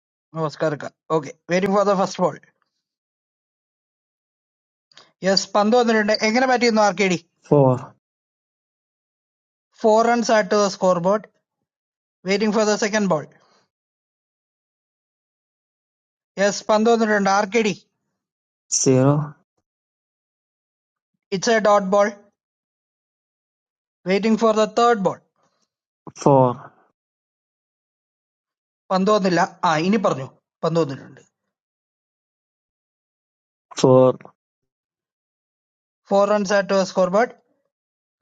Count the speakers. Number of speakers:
two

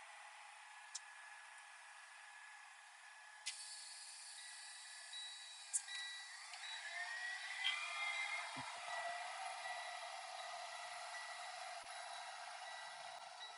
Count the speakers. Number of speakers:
zero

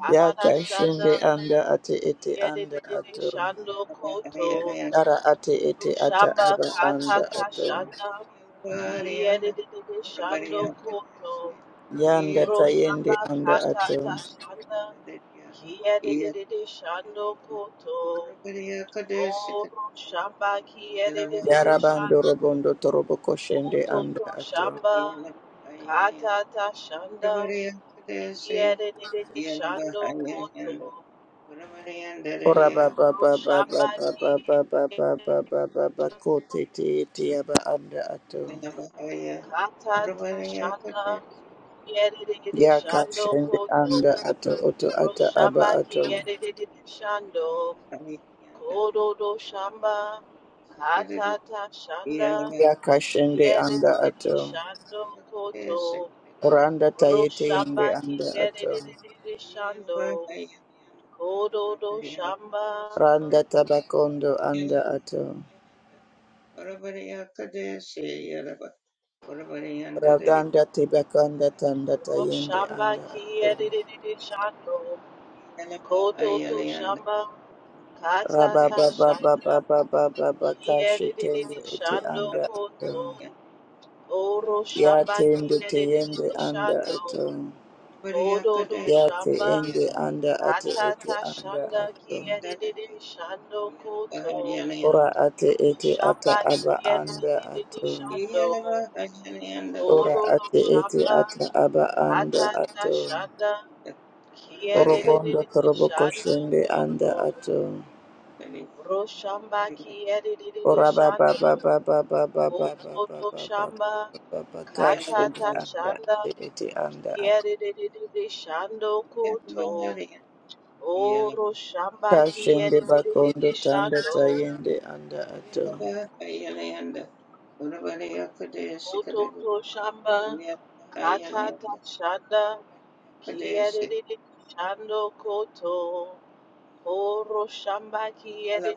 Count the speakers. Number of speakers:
three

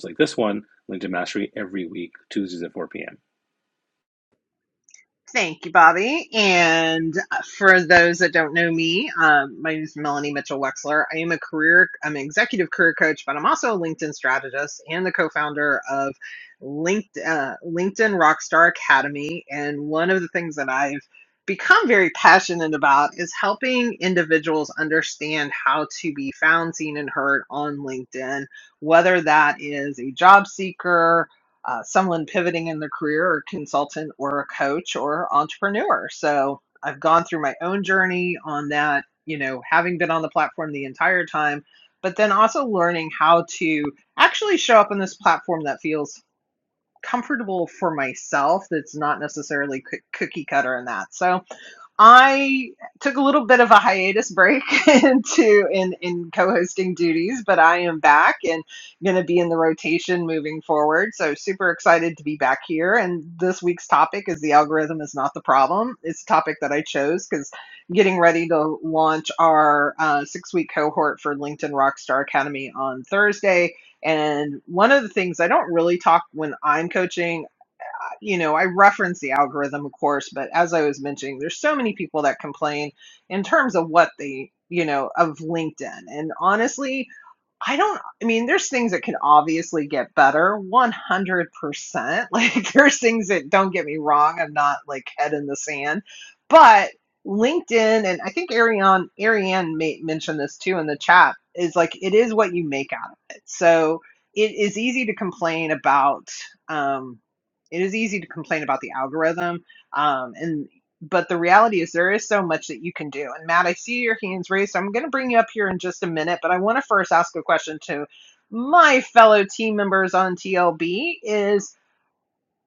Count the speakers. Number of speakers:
two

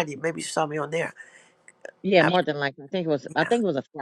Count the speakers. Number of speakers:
two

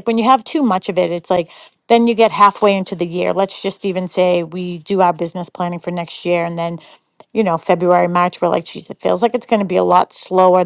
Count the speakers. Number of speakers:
one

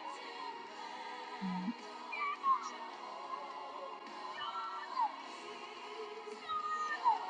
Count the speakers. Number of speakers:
zero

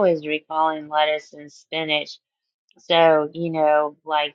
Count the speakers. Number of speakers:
one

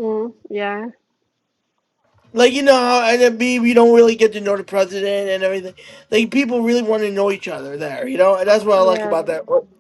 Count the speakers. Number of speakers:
two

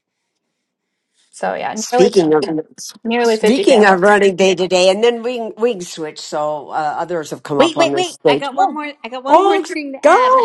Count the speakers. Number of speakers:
three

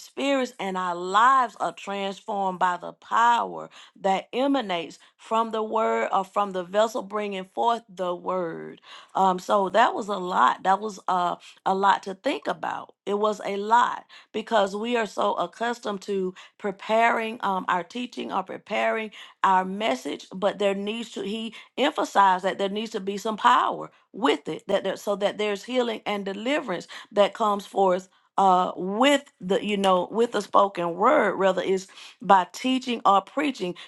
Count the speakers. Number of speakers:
one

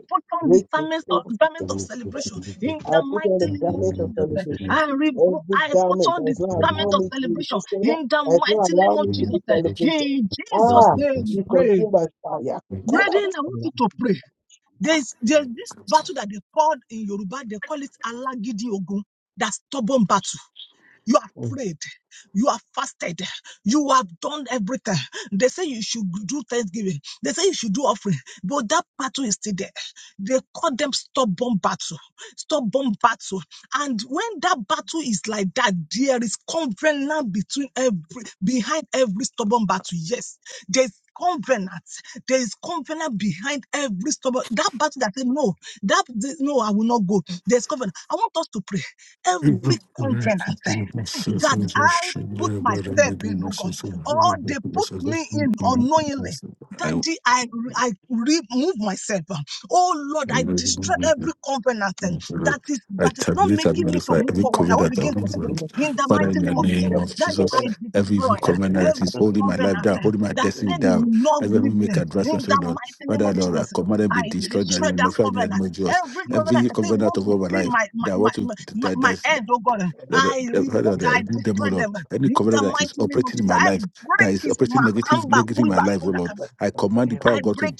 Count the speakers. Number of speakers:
three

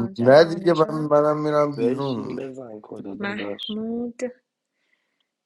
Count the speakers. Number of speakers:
three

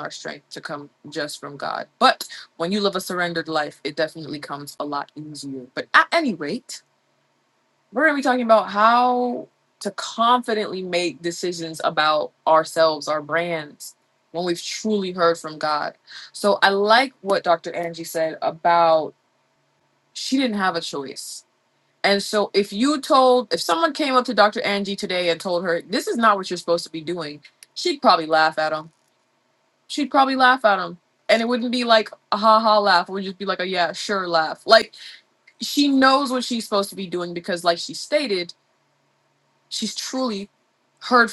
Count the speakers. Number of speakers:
one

